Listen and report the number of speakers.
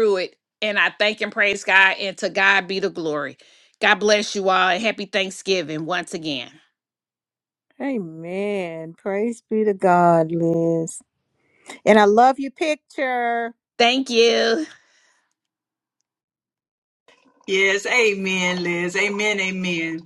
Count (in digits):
3